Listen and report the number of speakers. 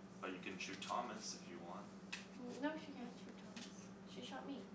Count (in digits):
2